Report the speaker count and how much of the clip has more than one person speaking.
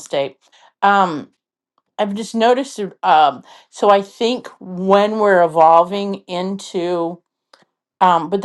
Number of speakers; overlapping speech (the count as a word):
one, no overlap